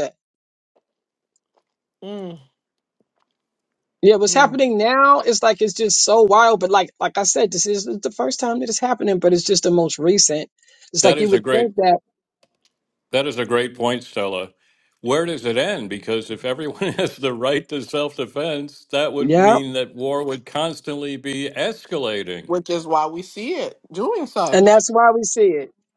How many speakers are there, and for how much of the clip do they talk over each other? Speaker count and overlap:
3, about 6%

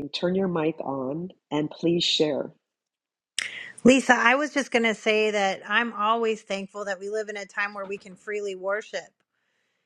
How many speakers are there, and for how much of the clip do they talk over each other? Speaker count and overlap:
2, no overlap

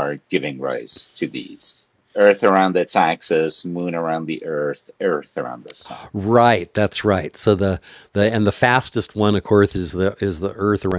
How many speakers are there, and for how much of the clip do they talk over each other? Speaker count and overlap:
2, about 1%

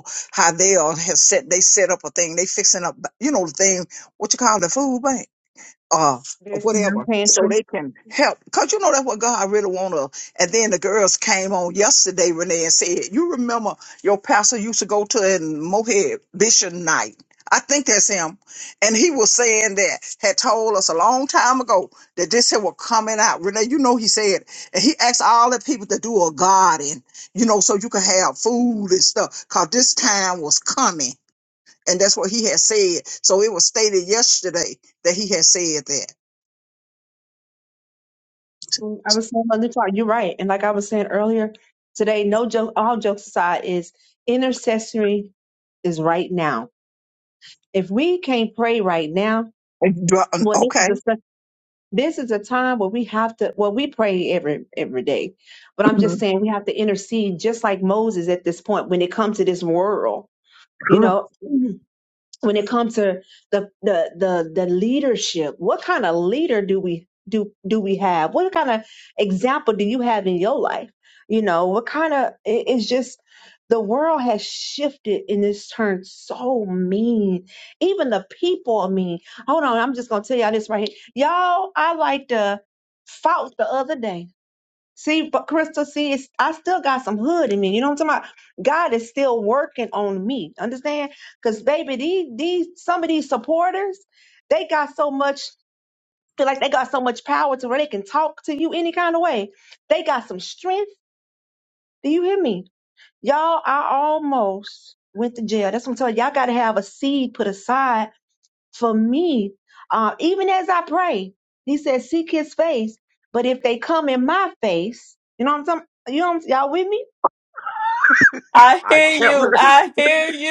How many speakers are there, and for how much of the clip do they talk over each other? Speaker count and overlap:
3, about 2%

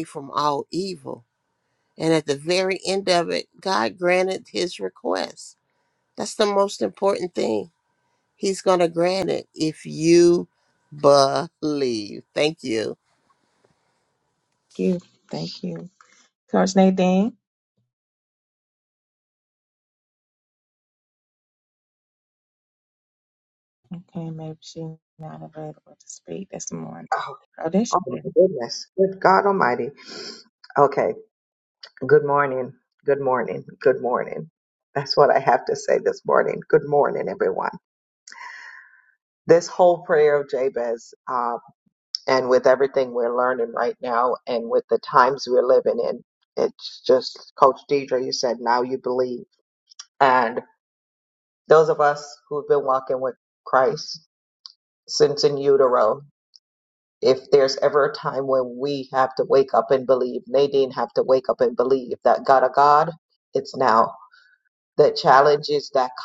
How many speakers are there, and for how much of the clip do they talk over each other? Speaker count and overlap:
3, under 1%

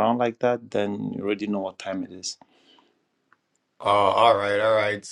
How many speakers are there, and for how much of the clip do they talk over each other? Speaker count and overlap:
2, no overlap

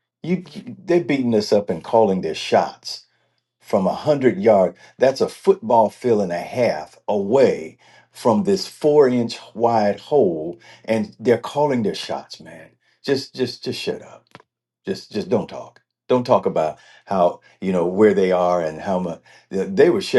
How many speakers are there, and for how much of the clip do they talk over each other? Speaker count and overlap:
1, no overlap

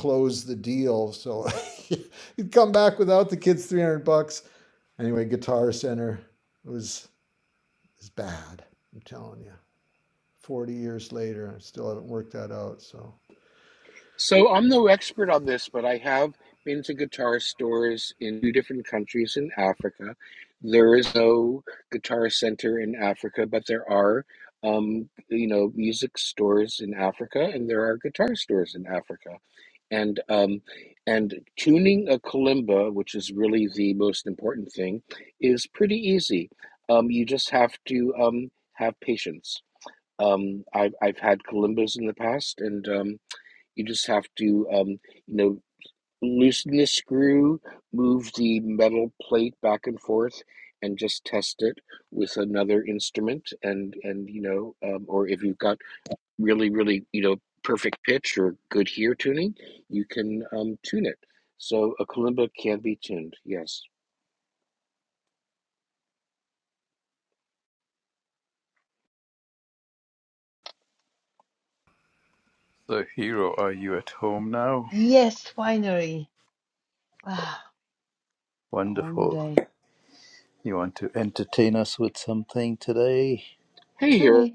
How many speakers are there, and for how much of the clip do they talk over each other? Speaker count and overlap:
4, about 1%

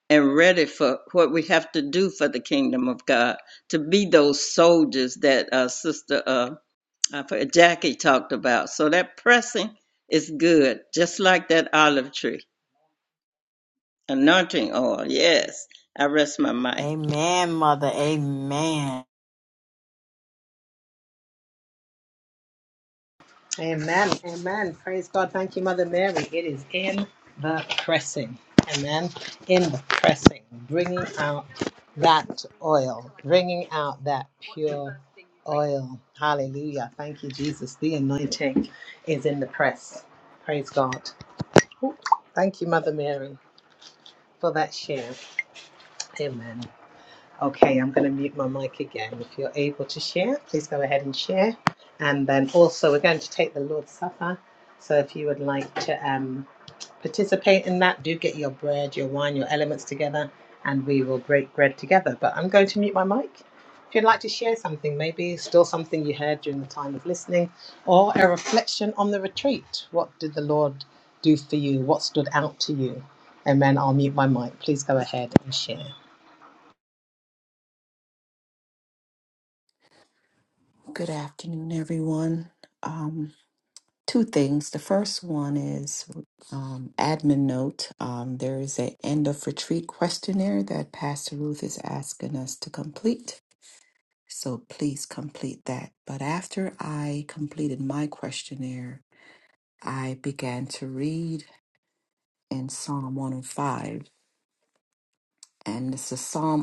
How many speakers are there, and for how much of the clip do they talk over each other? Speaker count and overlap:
4, under 1%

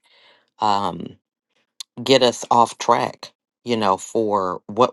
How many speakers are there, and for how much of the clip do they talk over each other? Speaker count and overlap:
1, no overlap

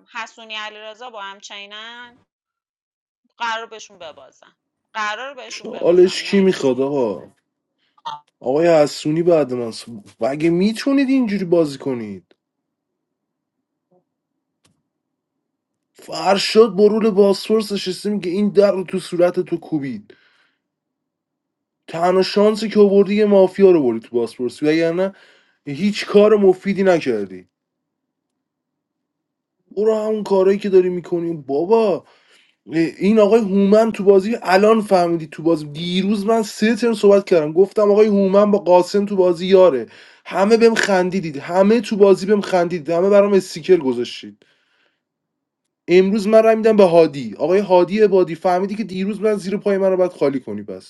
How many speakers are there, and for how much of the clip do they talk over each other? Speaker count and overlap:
2, about 2%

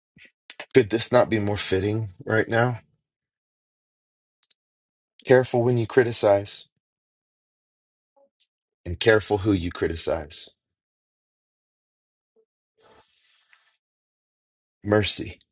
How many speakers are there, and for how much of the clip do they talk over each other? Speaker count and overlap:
1, no overlap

